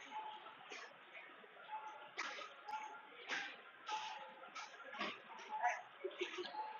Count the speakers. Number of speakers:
zero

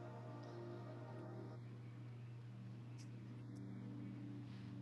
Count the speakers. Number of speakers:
zero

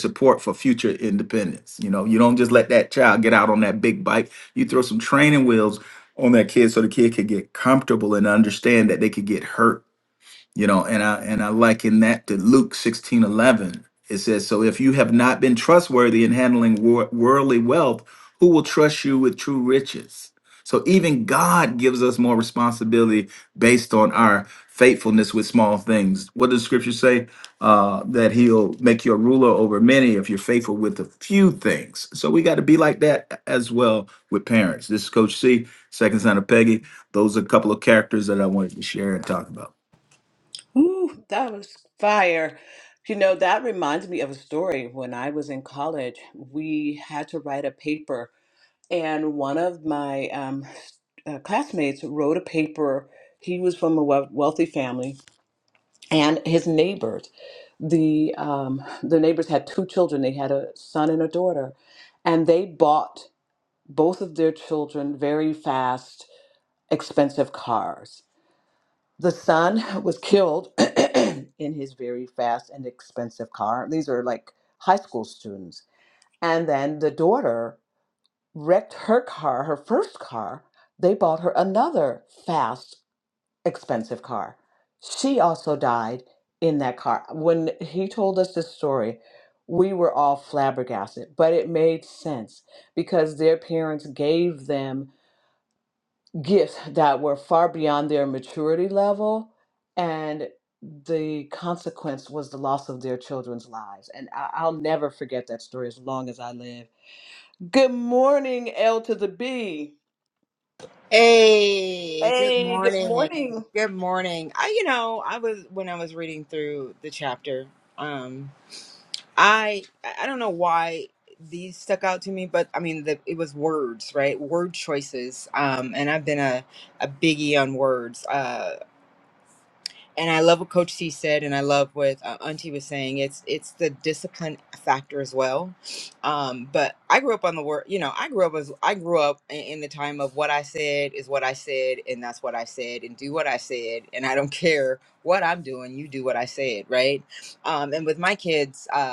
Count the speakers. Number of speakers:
three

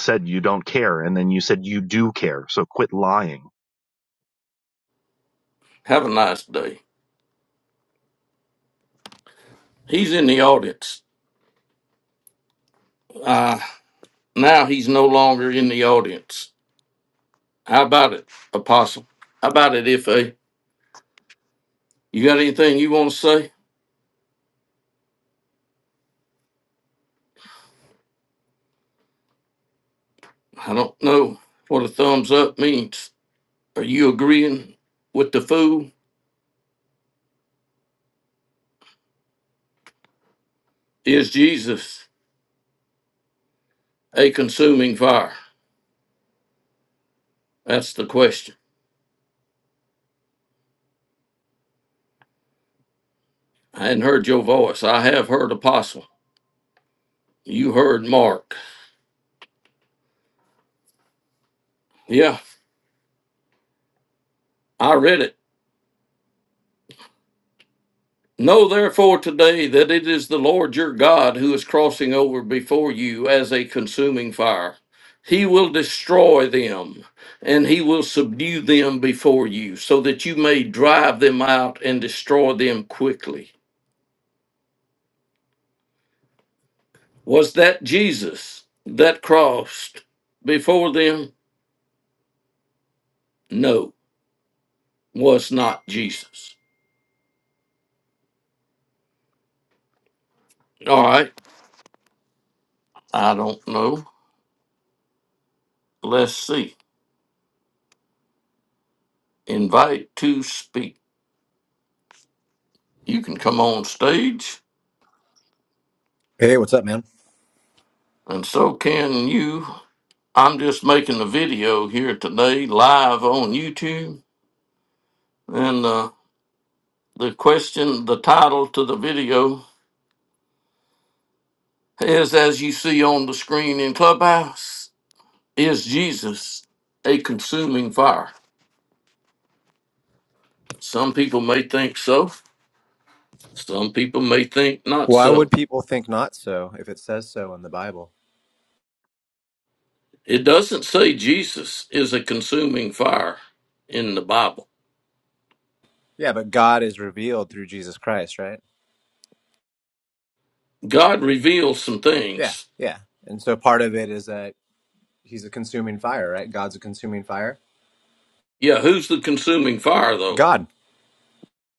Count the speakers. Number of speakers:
three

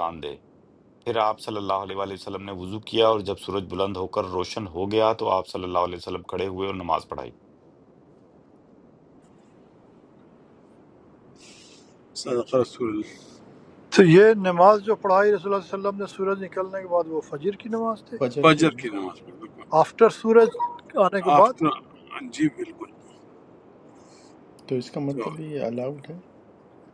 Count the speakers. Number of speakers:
four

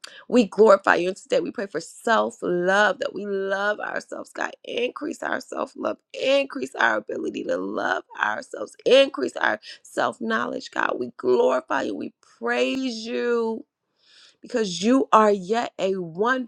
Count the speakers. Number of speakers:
one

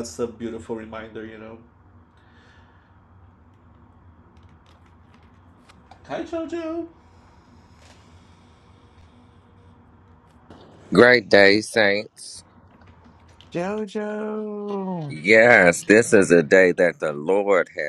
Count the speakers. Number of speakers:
three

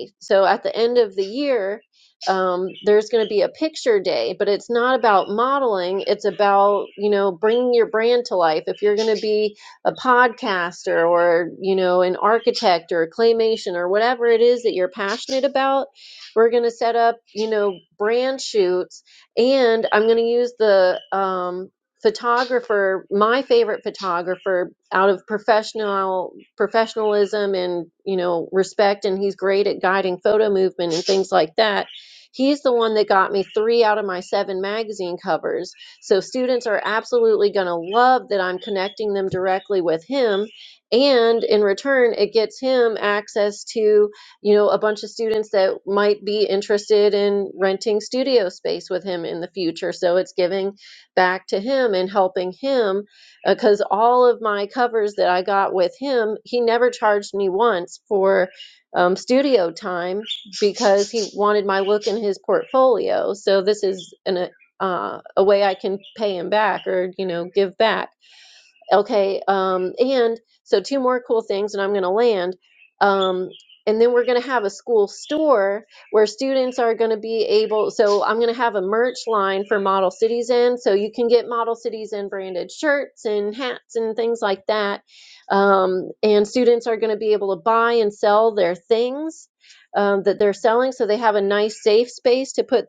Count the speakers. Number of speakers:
one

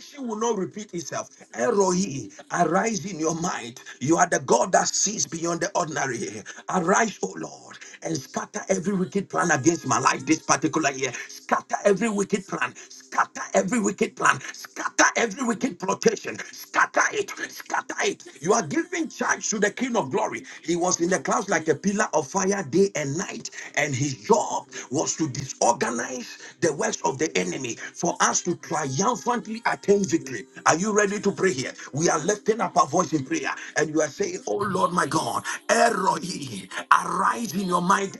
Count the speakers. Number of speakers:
one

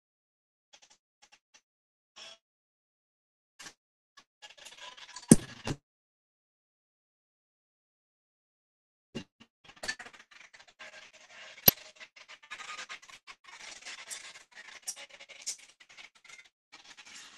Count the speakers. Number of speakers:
zero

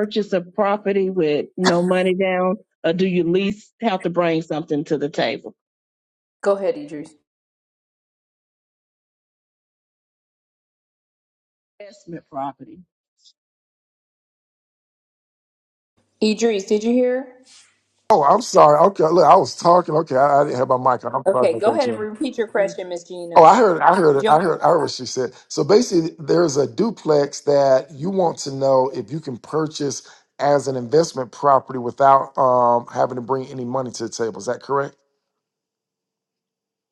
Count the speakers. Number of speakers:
three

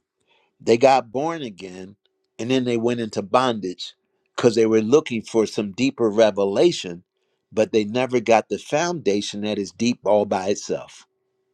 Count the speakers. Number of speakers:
one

